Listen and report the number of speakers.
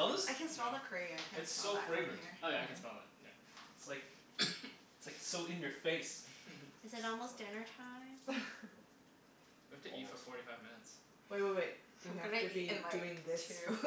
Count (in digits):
4